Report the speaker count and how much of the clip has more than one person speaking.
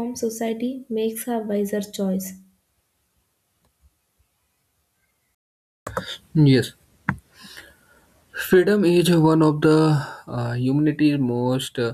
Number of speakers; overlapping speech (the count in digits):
2, no overlap